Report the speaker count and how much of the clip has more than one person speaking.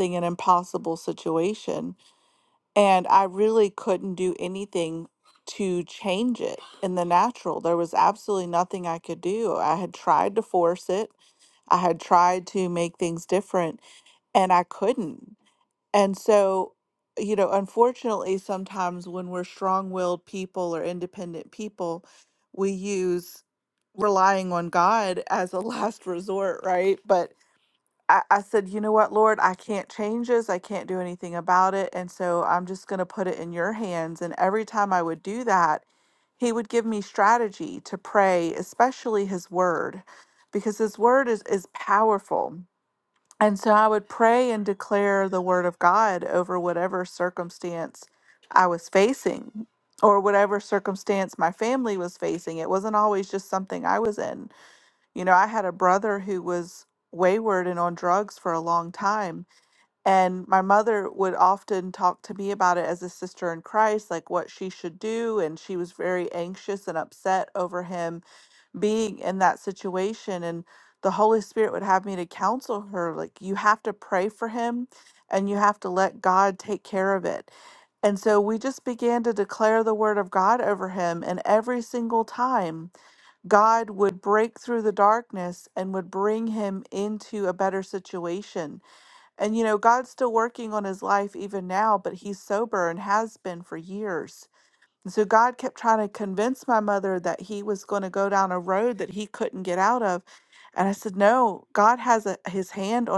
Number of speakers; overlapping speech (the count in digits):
1, no overlap